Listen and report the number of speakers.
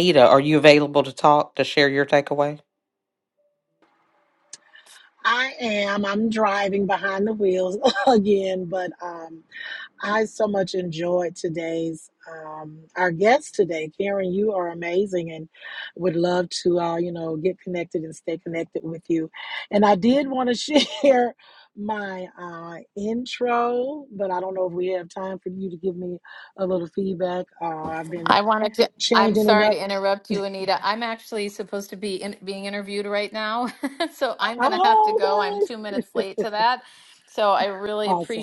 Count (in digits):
3